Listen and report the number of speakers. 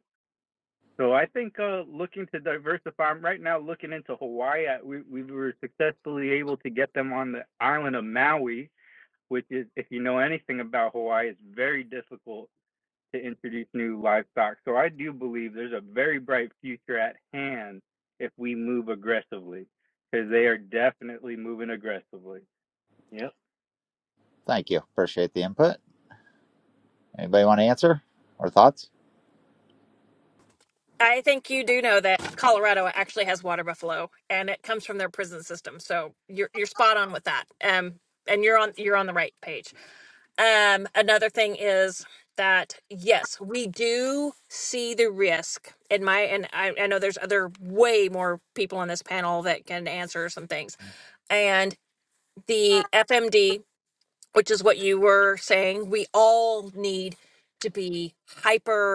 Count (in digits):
3